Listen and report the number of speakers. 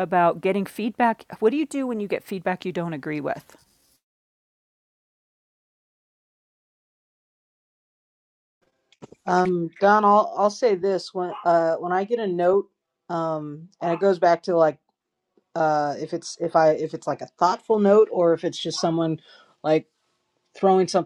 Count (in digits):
2